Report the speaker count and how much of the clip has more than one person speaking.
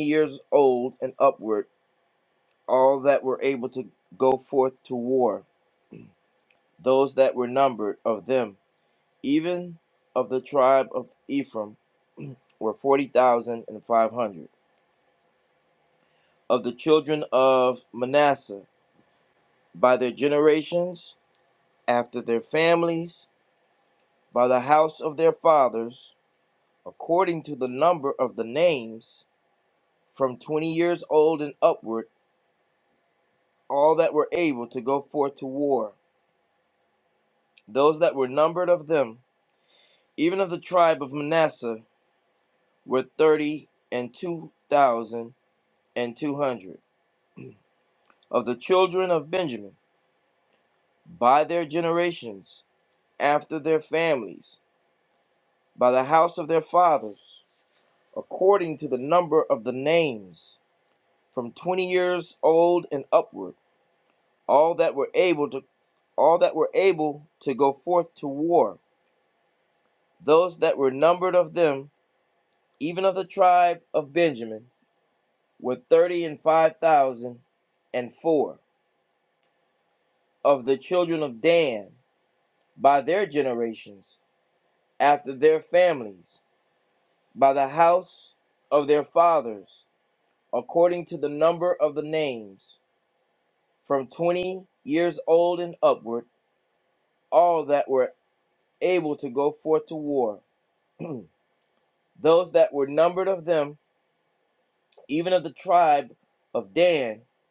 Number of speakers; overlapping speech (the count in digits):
1, no overlap